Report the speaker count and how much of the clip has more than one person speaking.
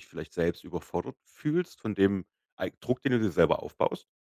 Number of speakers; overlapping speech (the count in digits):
1, no overlap